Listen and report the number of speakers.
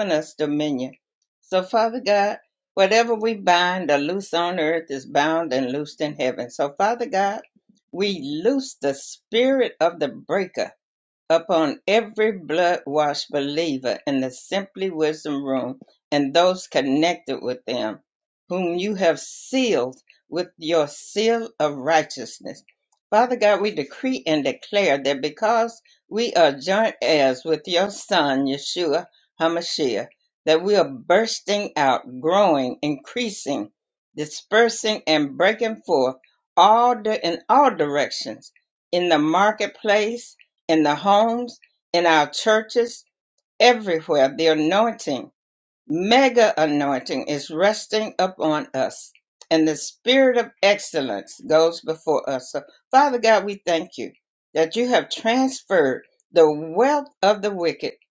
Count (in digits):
1